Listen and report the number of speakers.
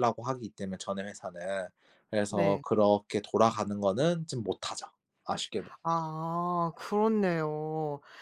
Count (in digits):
2